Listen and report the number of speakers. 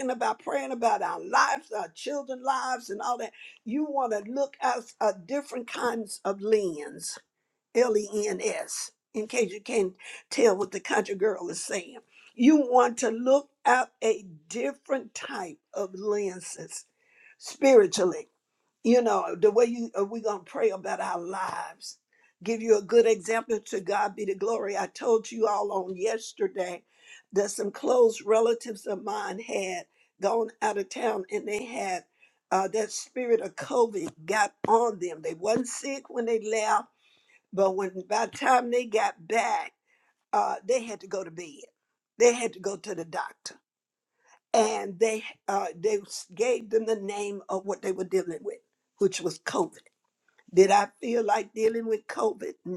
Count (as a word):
one